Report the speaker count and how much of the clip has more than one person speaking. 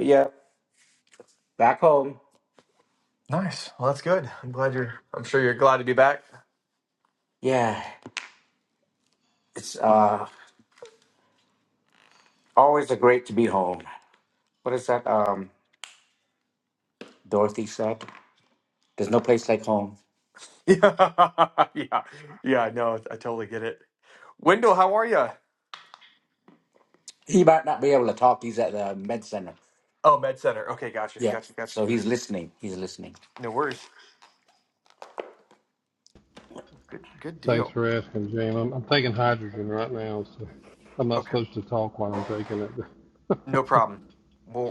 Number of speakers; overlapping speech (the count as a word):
three, about 2%